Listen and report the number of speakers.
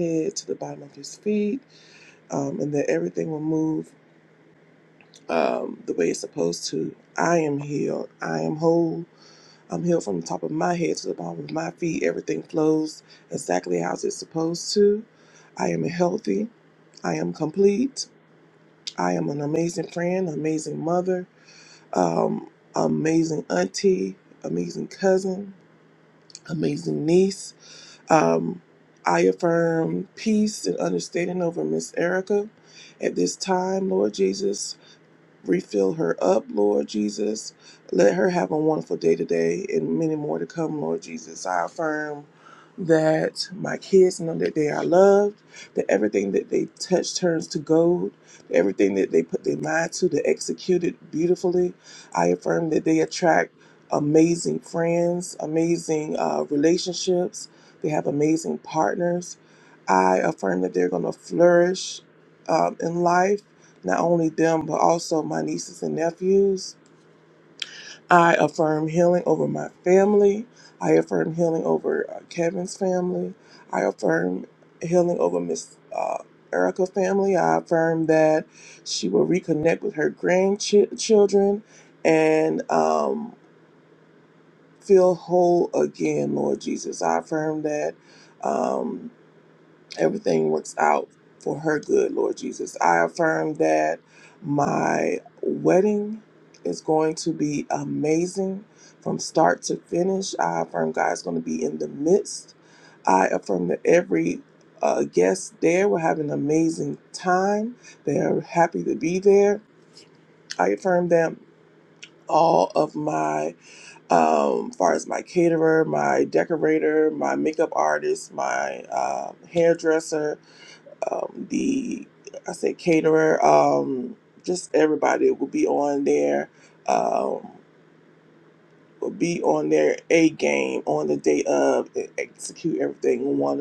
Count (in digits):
1